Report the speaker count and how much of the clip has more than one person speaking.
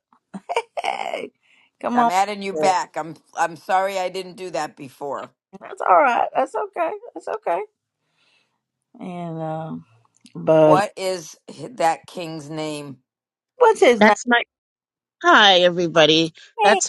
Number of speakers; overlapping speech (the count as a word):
three, about 6%